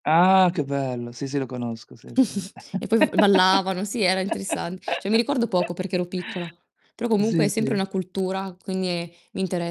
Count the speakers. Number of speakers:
2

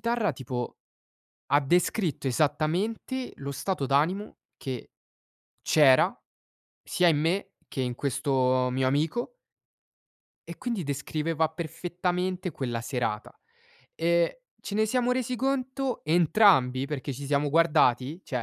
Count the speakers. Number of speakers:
1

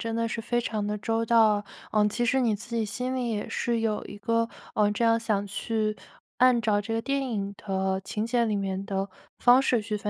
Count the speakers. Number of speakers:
1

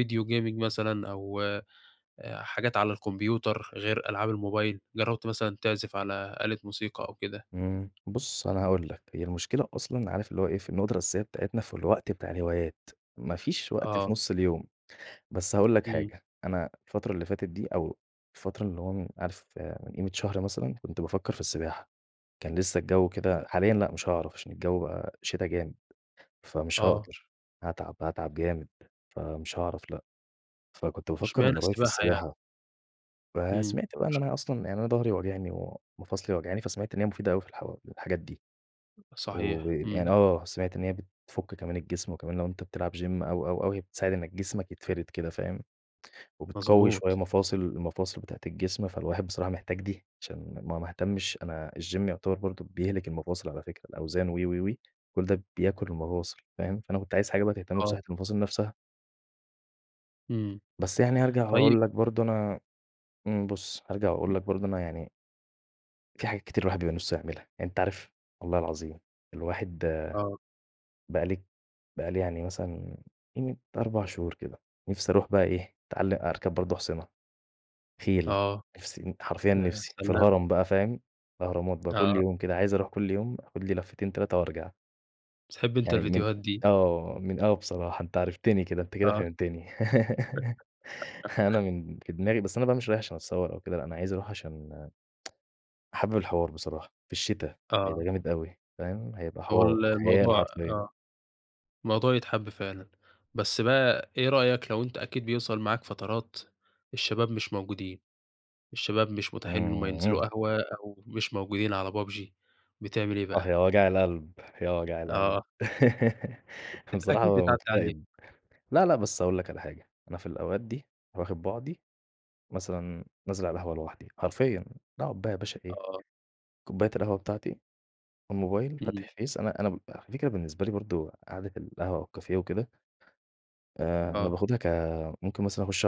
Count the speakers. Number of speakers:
2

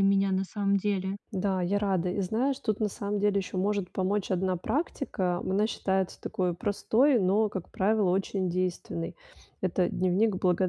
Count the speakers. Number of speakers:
2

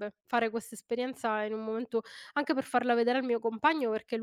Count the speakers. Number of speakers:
1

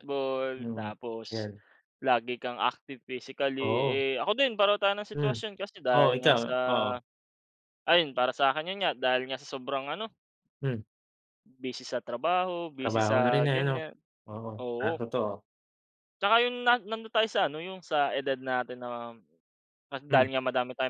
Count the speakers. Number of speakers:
2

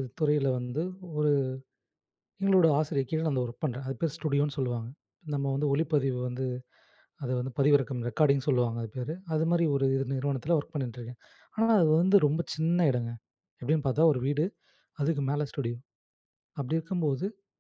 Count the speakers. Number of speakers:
1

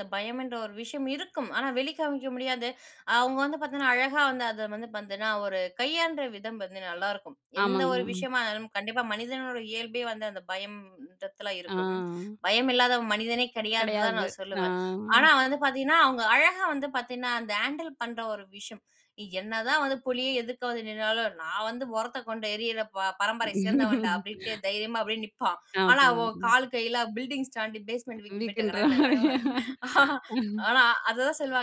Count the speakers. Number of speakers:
2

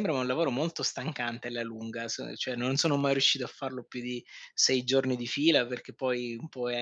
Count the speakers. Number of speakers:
1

